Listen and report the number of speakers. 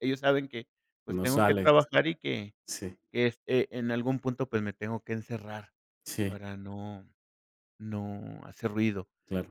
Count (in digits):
2